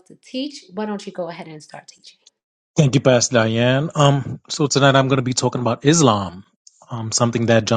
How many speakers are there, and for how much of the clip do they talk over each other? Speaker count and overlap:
2, no overlap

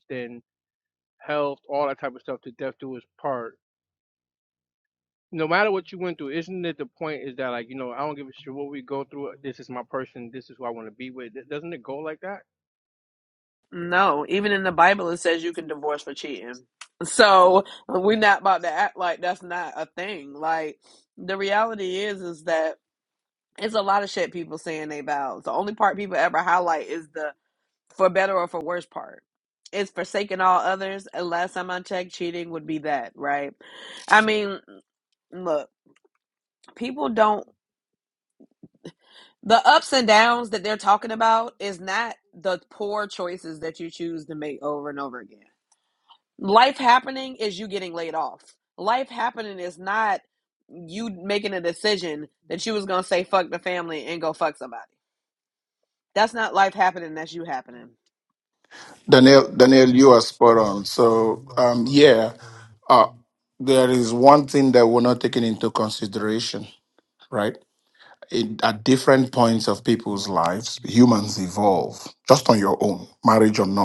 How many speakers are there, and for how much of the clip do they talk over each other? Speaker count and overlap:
3, no overlap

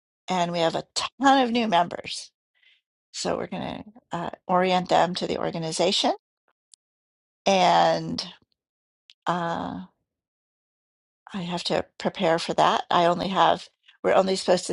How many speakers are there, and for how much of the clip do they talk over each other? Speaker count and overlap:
1, no overlap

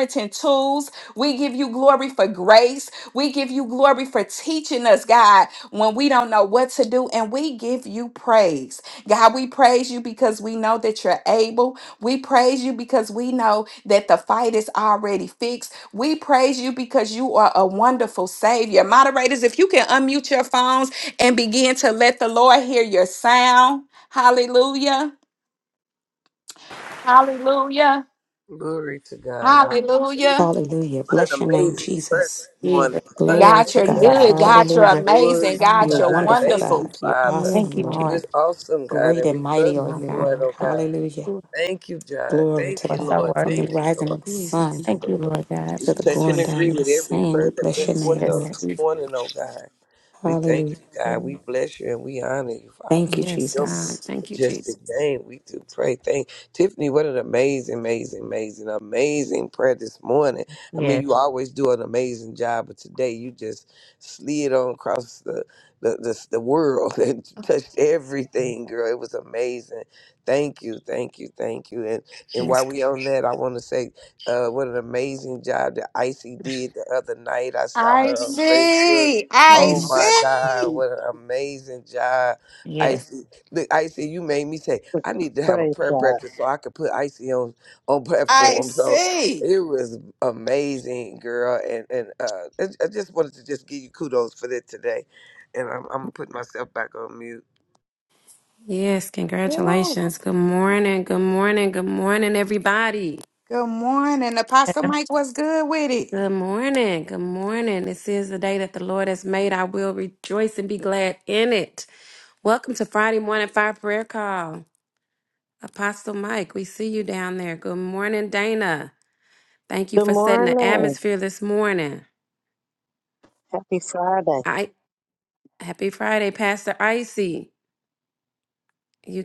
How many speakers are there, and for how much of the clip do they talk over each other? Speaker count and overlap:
6, about 17%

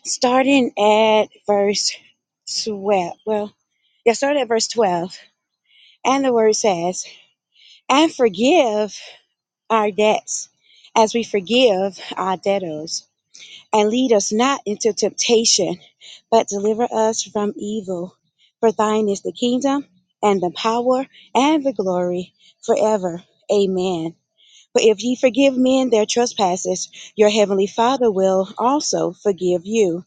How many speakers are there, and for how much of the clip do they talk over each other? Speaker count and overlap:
1, no overlap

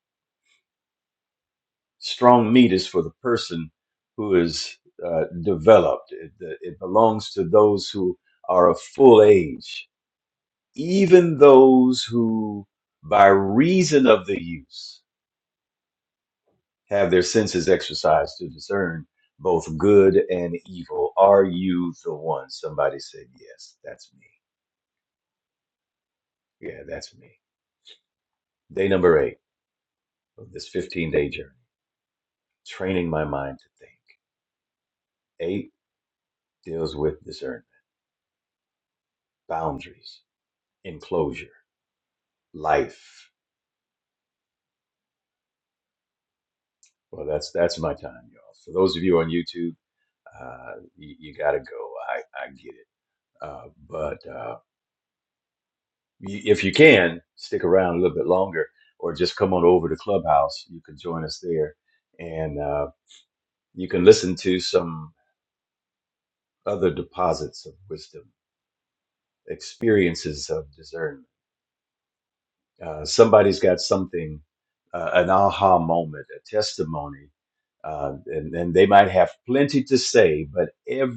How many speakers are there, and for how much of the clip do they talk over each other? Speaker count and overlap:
1, no overlap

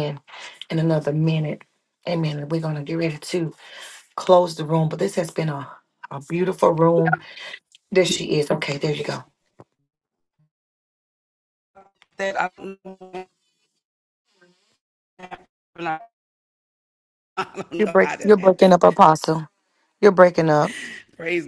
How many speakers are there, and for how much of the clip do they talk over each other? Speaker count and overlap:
2, about 4%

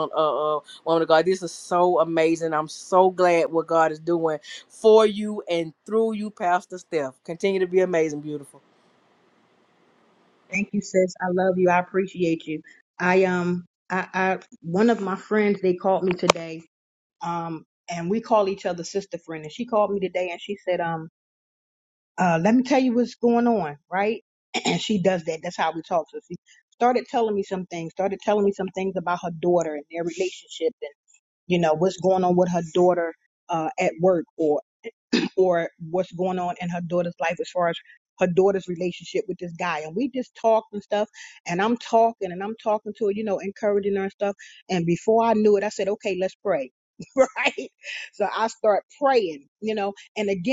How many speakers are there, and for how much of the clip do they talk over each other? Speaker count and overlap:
2, no overlap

